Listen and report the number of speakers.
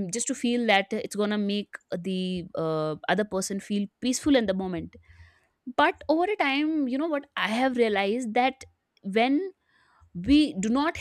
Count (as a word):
one